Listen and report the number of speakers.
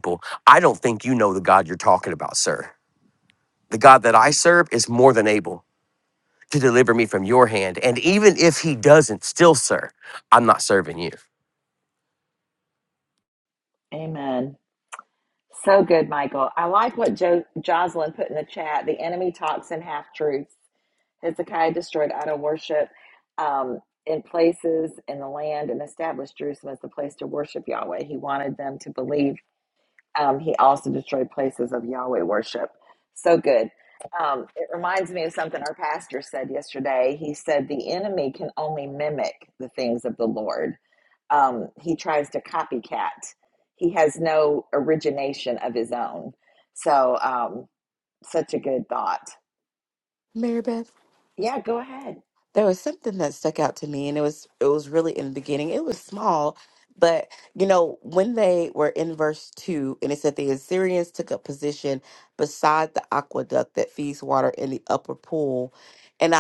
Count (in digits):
3